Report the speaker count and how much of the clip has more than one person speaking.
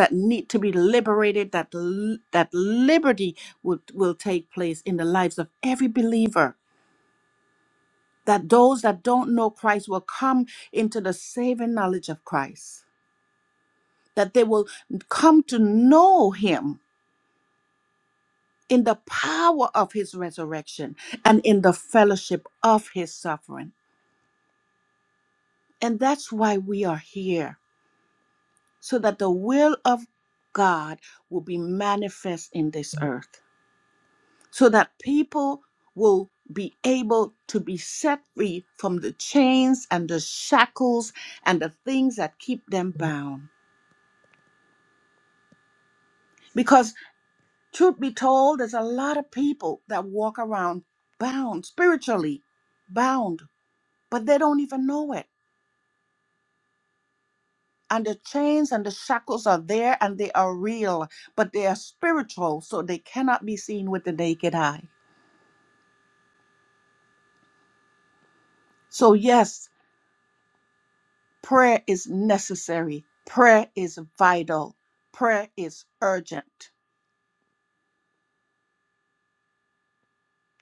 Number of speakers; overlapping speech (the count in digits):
1, no overlap